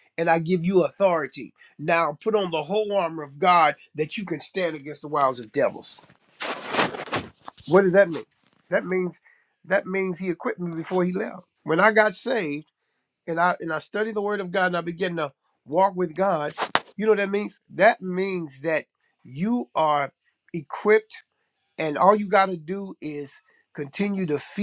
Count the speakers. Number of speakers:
one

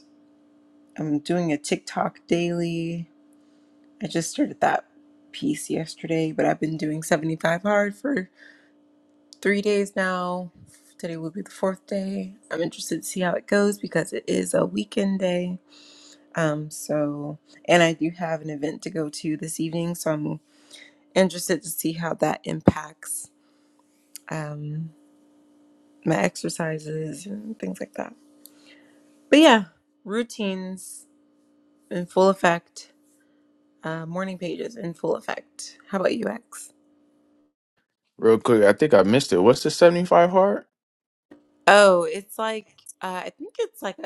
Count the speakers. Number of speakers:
two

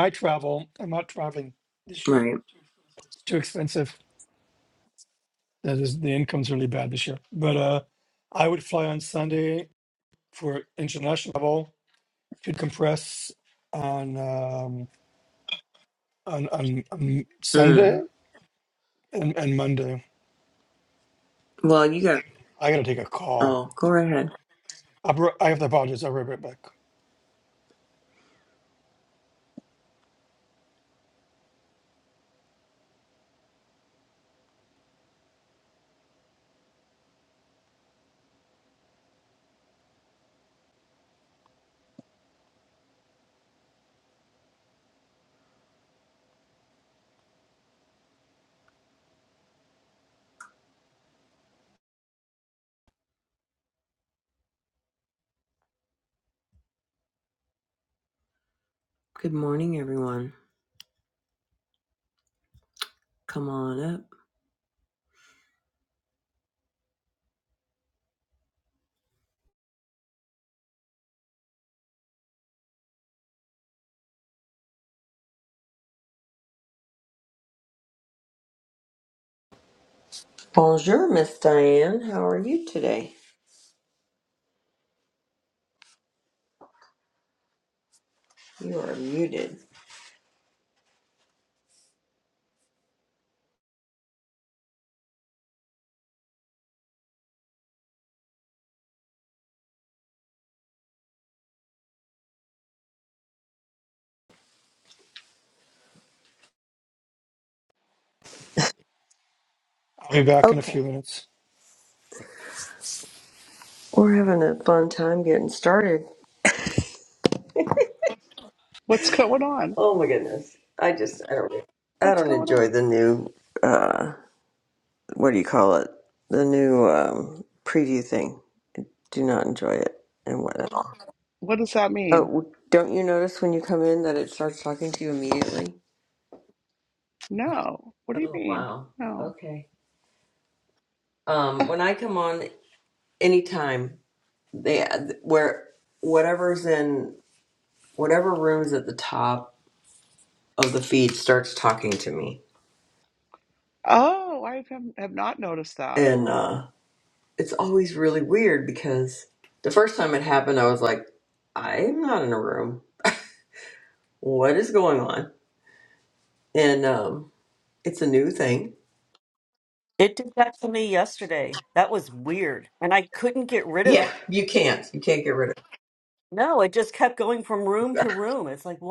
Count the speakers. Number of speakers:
four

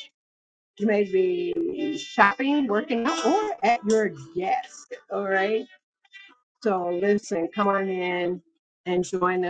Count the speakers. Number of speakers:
one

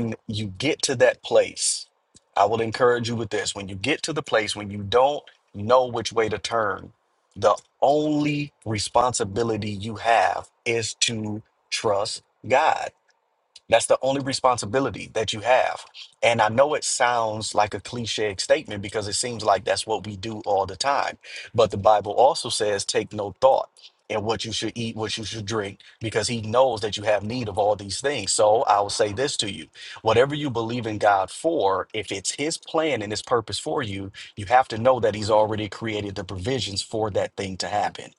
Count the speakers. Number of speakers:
one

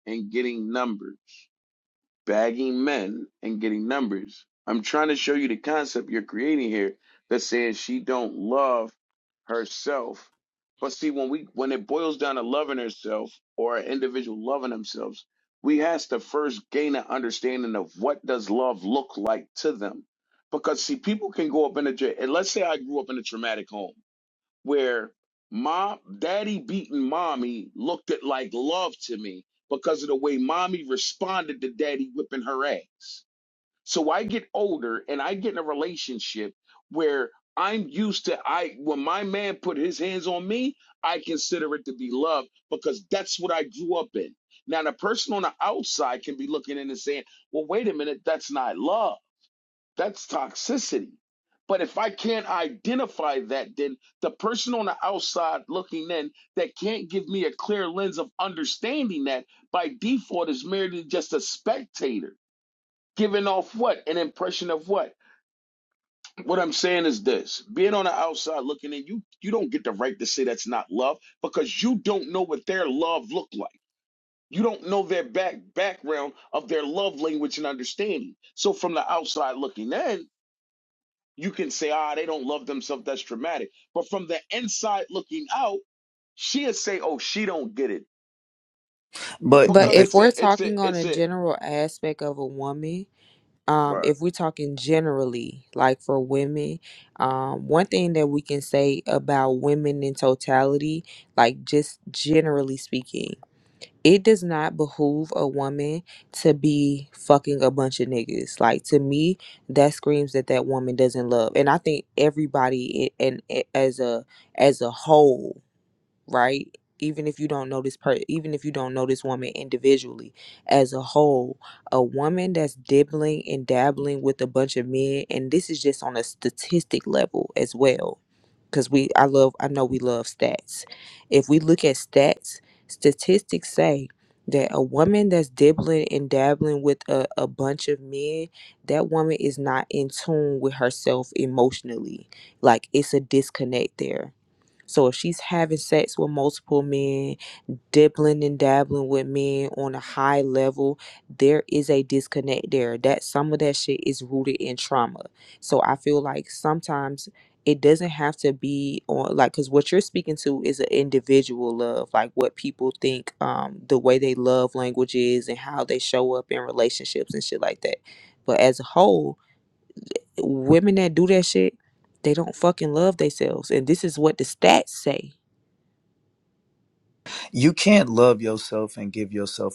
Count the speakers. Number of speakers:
three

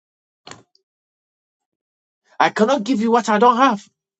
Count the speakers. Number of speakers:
one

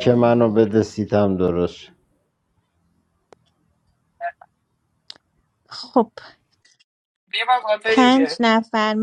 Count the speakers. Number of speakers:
three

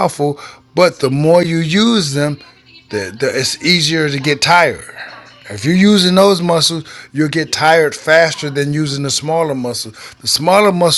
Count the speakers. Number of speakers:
one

